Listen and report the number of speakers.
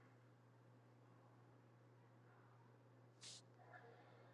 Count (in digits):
0